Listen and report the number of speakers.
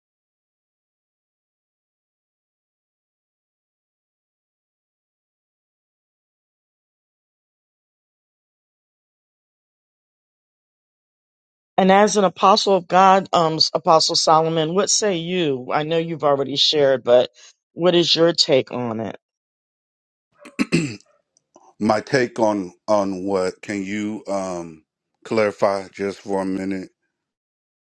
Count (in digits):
2